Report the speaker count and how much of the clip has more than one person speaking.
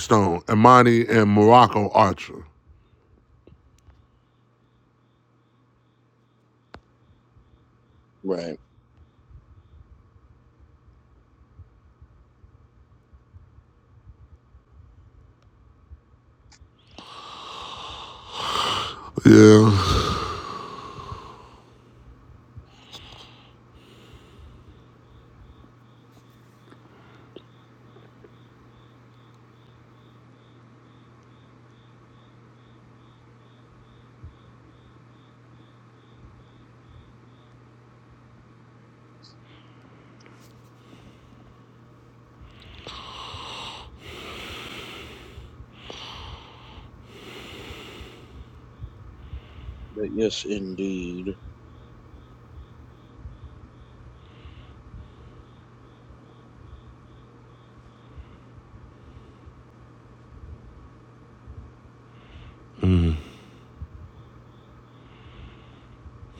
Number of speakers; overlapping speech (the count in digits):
2, no overlap